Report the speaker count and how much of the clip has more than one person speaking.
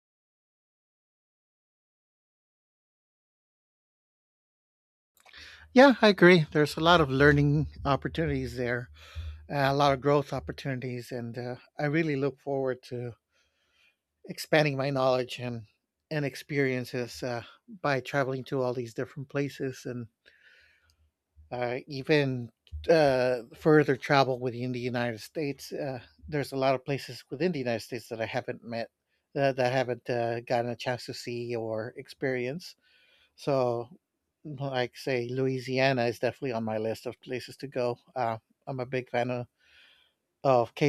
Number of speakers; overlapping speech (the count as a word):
one, no overlap